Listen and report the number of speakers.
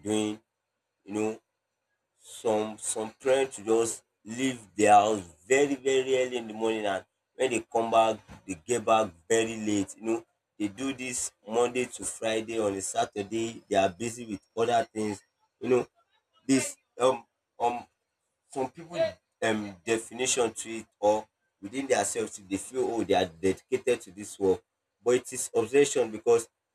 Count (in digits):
1